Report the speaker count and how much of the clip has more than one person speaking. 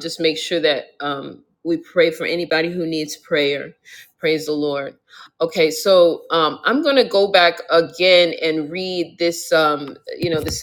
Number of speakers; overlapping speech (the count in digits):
1, no overlap